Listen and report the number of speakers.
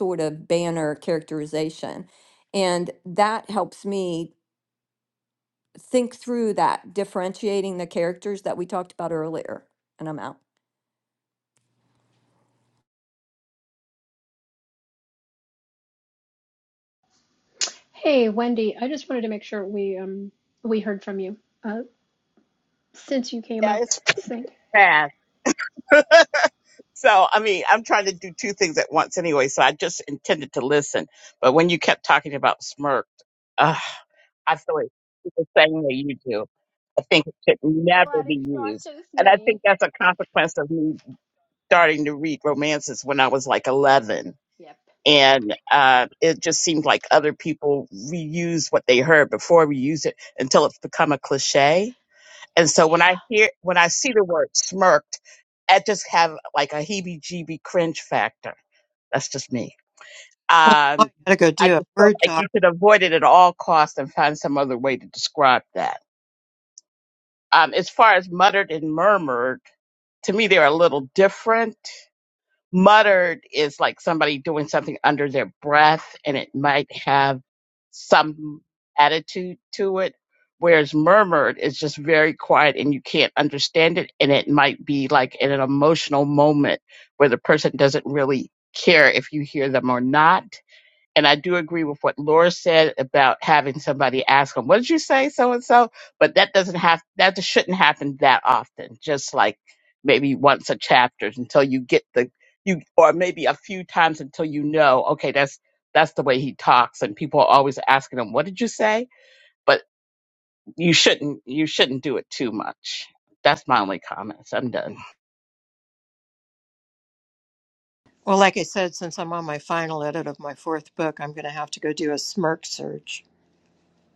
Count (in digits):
4